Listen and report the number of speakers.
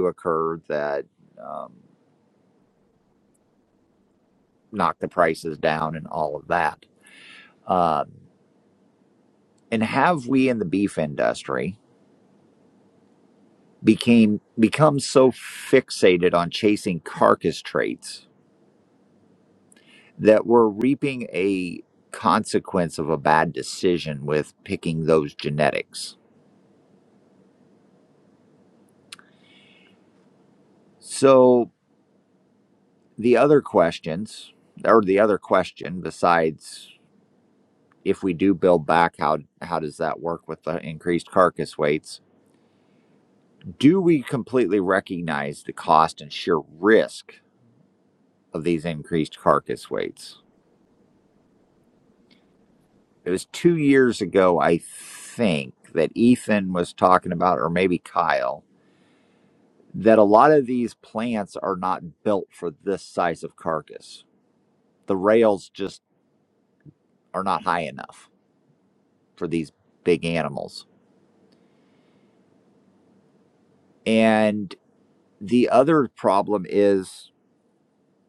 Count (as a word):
one